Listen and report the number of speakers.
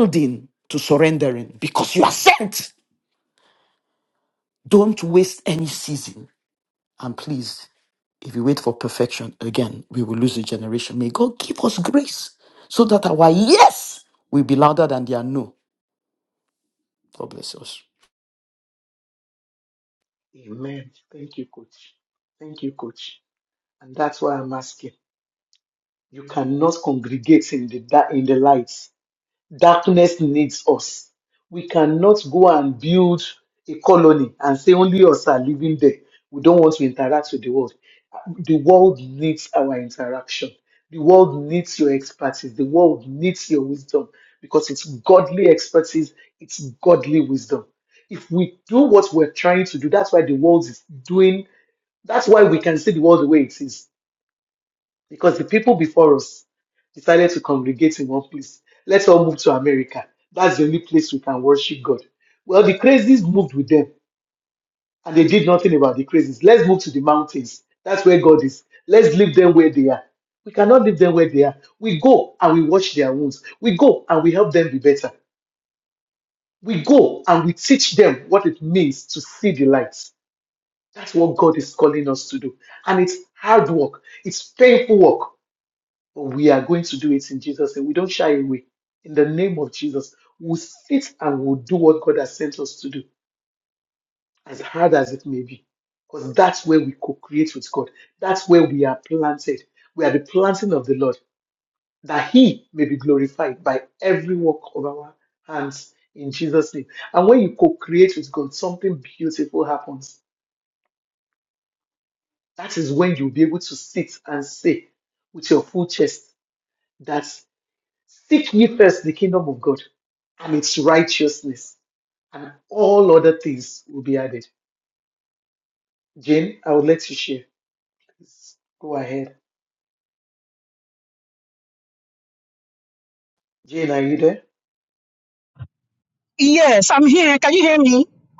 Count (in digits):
3